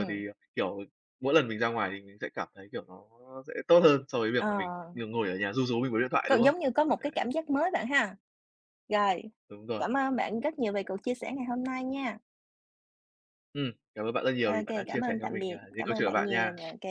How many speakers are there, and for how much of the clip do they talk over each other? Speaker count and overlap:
2, about 19%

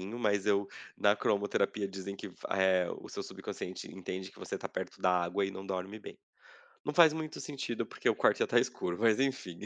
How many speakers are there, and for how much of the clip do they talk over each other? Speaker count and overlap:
1, no overlap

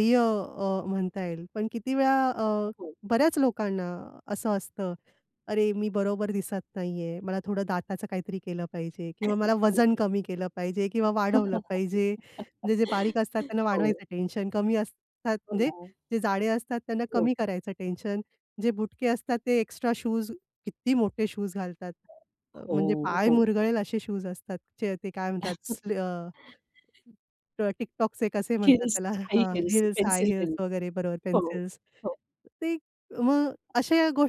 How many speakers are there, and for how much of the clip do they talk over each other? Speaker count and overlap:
2, about 9%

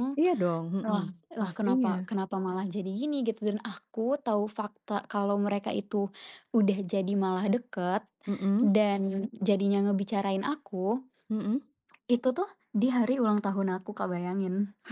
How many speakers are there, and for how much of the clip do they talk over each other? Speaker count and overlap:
2, about 7%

